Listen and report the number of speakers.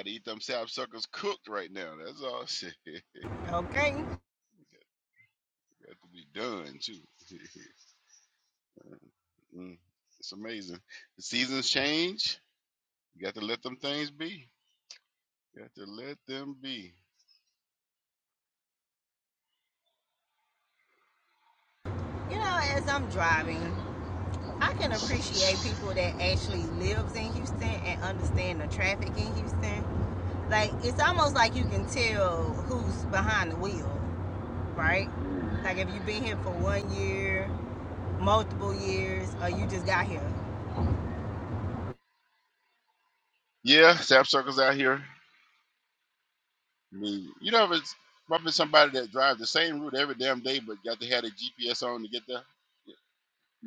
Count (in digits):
2